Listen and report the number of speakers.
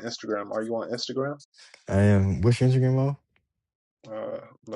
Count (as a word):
two